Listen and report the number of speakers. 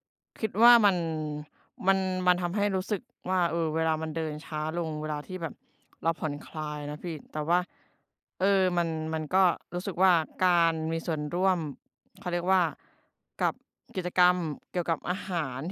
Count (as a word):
one